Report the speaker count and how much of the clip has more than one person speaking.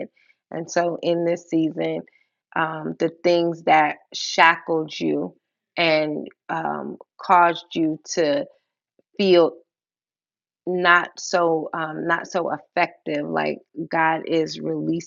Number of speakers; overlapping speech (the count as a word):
one, no overlap